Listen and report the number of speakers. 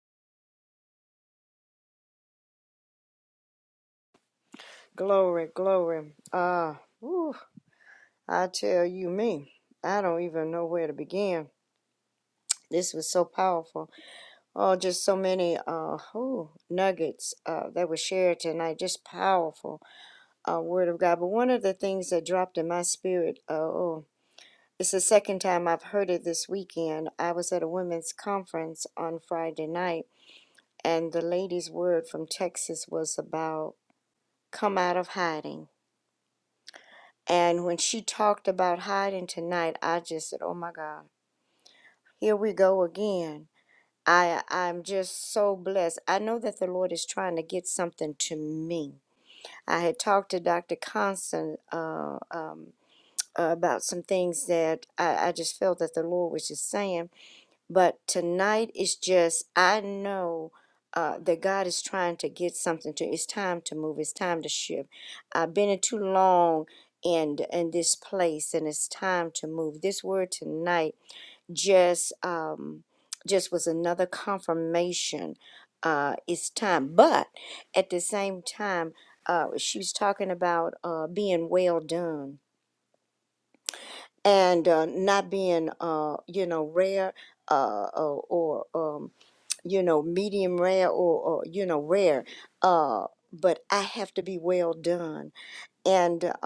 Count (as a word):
one